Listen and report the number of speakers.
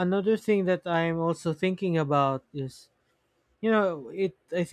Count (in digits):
1